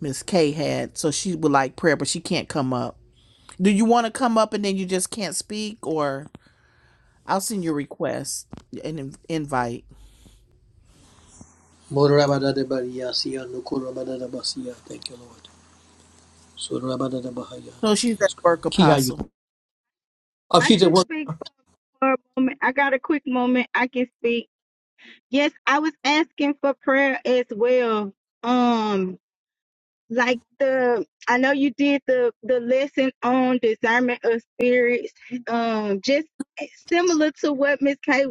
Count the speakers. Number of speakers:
3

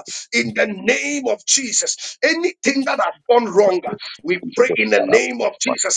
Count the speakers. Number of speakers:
1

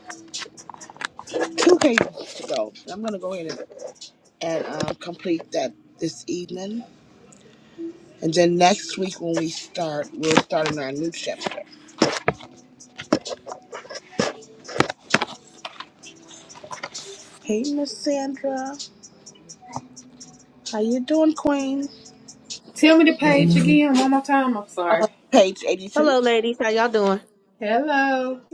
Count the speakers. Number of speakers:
3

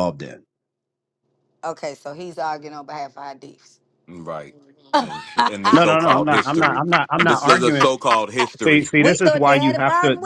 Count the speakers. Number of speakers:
3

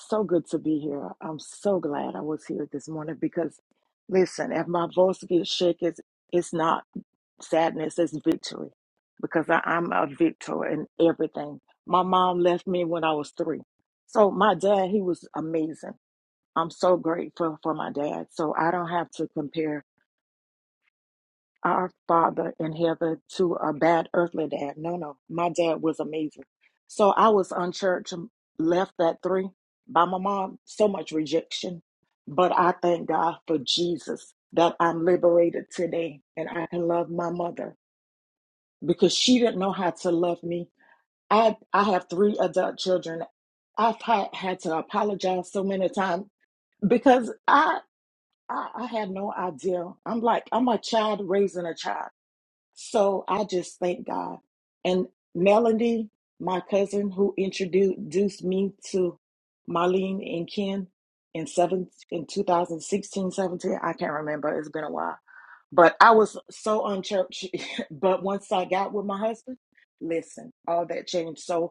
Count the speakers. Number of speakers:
1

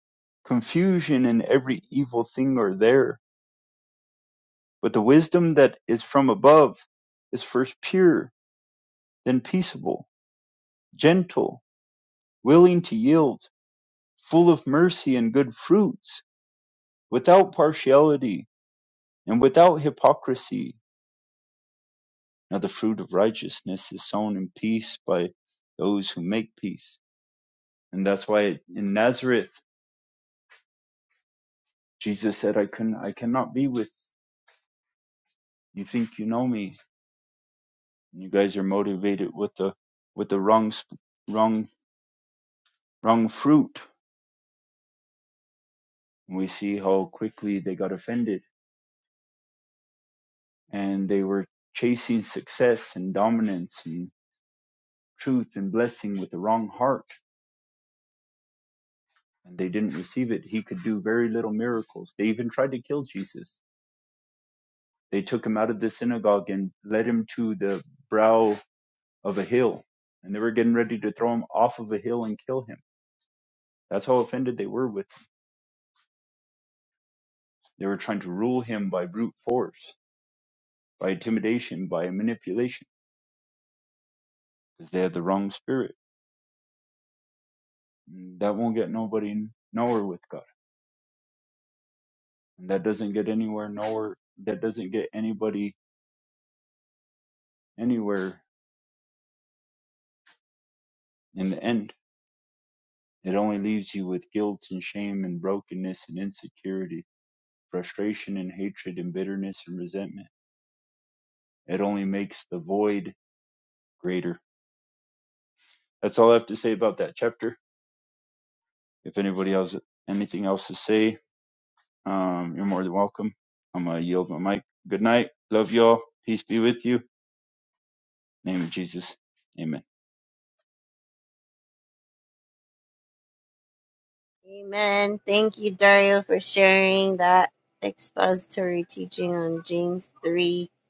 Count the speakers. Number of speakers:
2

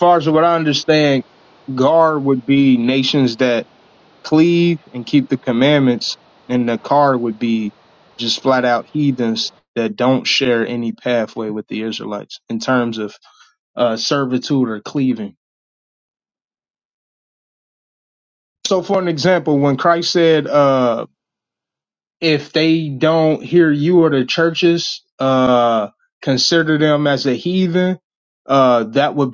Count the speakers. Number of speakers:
1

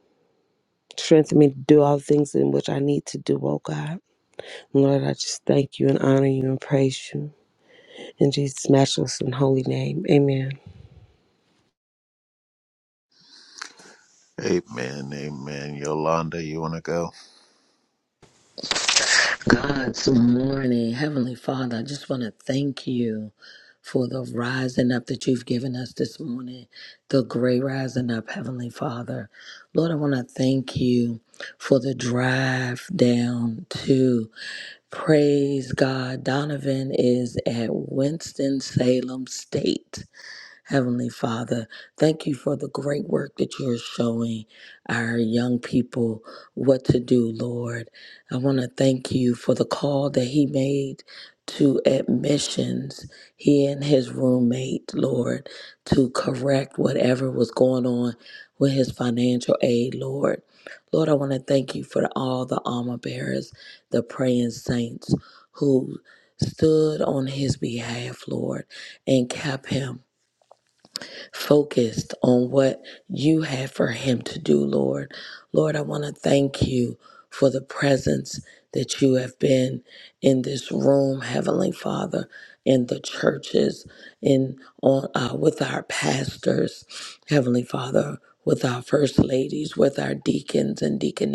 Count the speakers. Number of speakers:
3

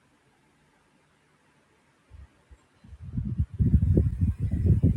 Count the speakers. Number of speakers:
0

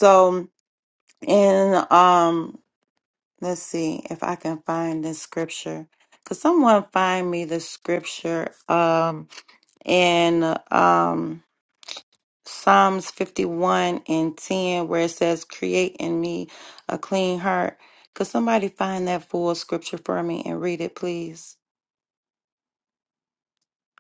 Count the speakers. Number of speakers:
1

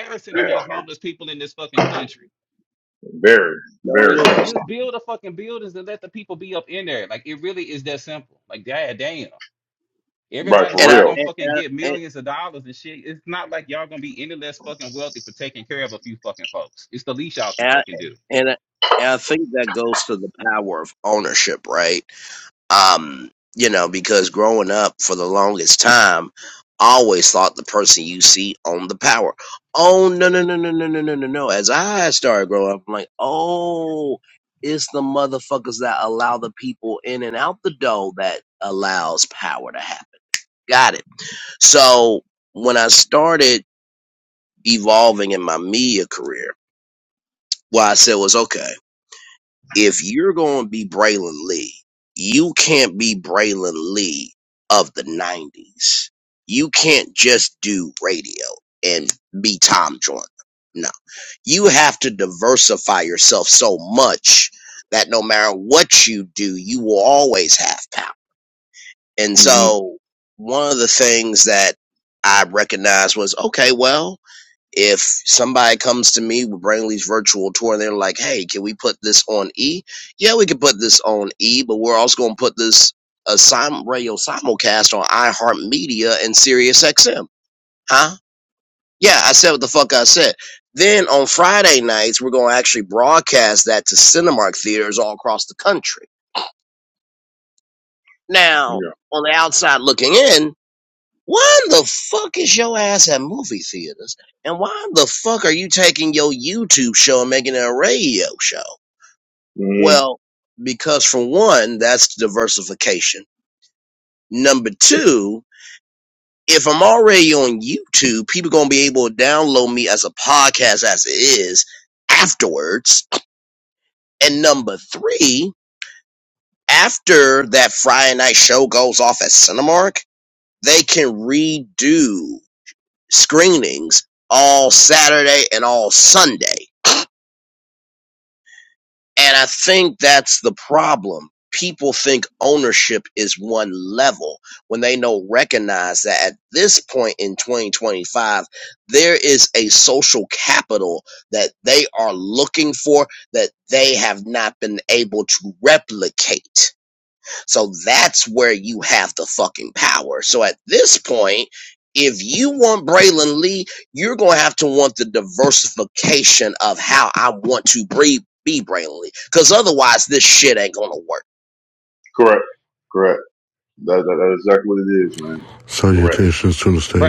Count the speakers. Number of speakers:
4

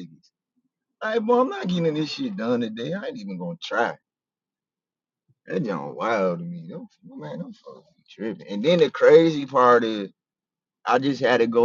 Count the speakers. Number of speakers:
1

